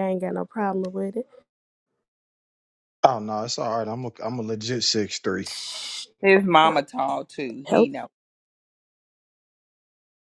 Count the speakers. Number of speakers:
three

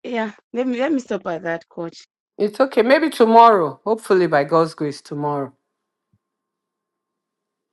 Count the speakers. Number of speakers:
two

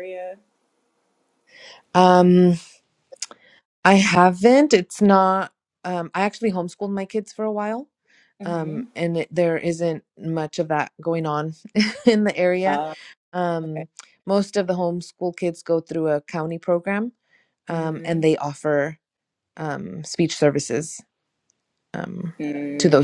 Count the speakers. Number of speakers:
two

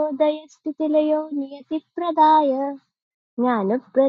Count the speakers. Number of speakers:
one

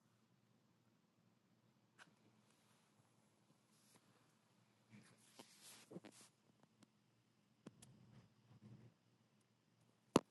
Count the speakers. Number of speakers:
zero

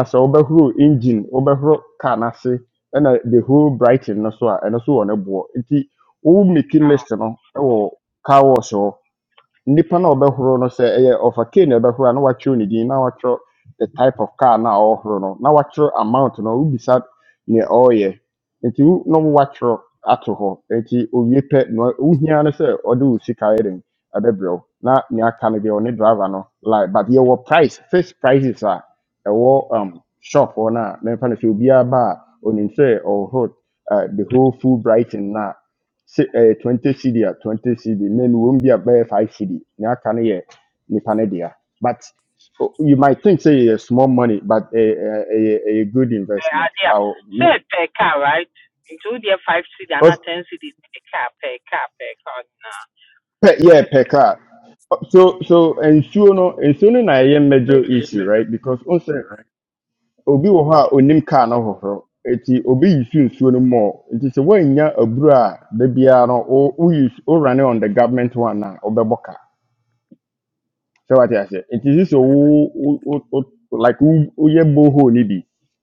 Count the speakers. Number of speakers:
two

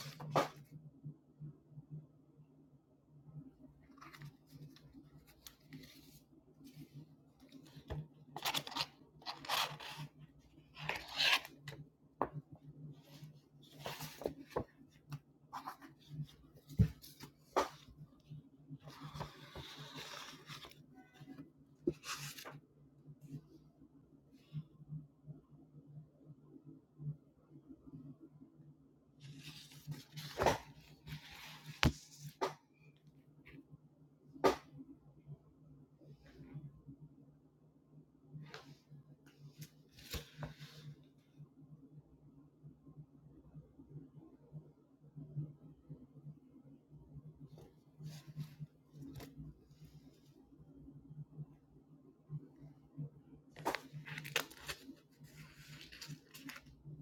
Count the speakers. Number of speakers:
zero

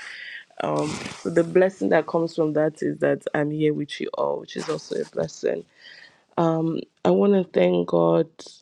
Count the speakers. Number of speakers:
one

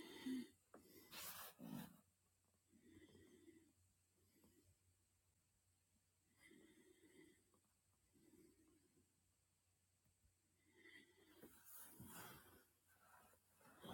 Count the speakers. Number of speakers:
zero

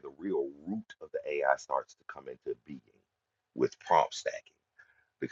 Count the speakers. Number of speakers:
one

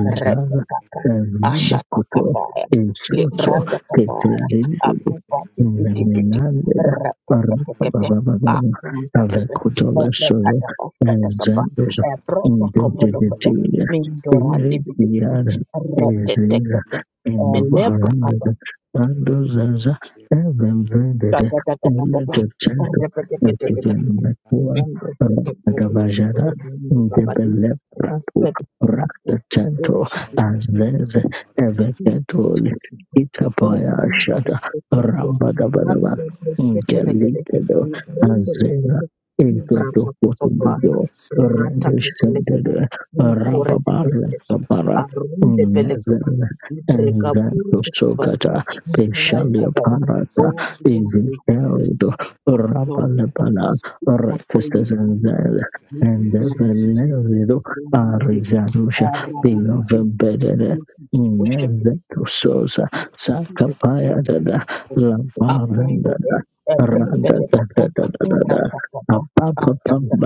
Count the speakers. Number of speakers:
two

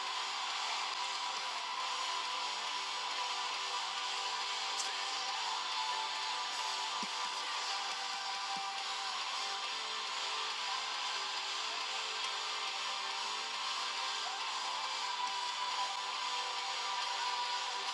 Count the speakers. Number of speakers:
zero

